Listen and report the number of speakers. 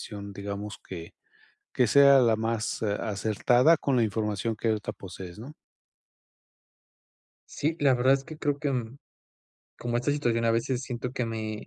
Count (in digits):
2